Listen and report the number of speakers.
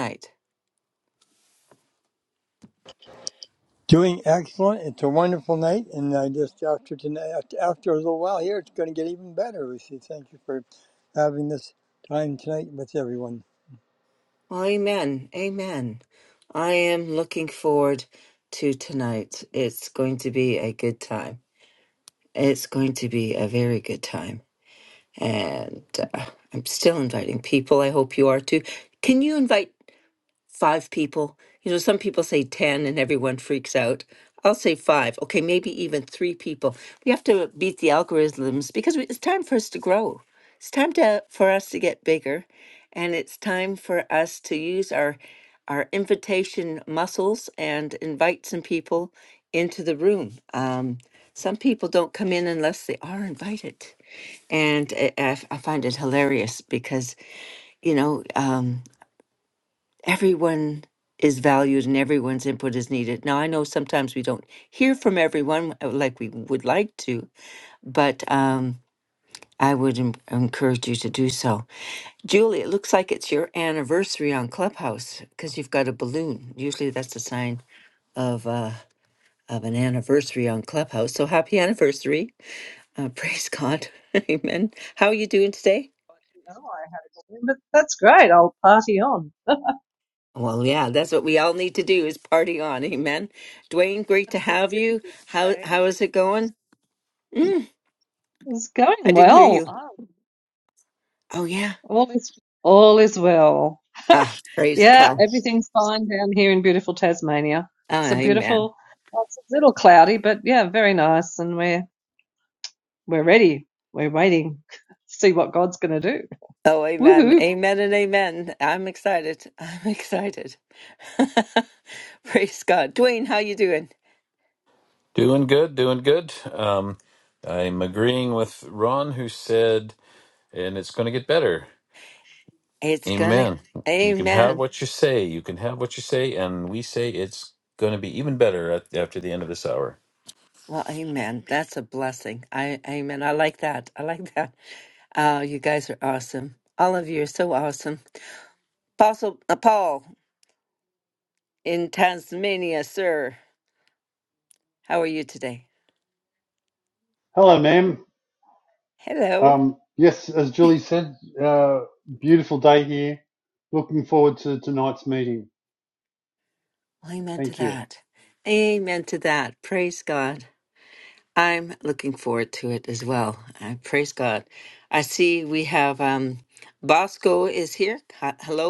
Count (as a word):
five